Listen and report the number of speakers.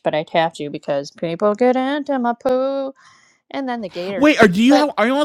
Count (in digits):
2